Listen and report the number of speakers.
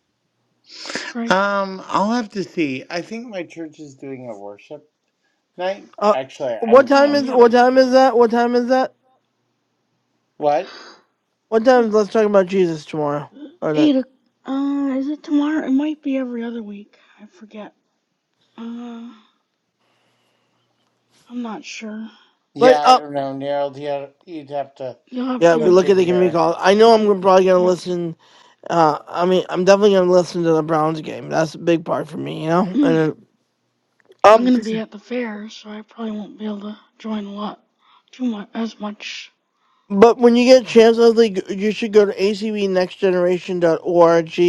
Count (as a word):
three